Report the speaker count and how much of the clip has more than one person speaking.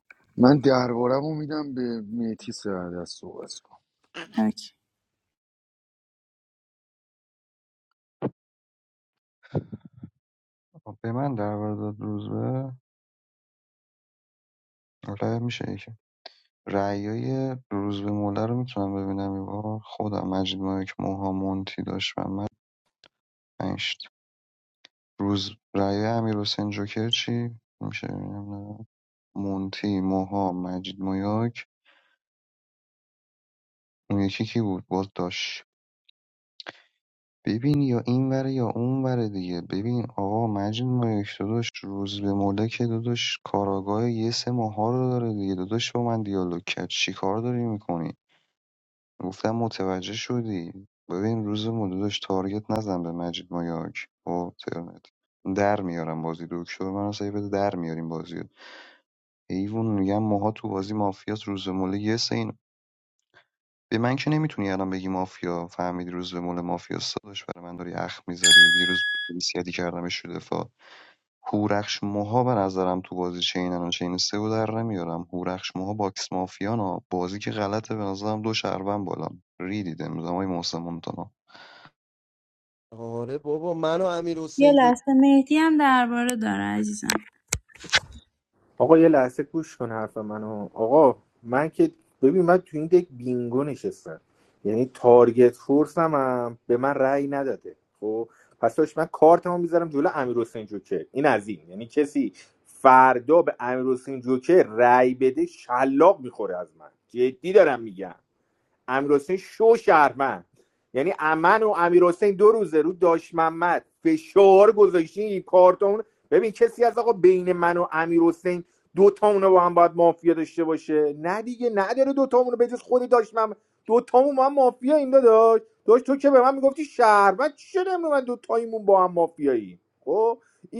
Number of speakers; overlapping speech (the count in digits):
5, under 1%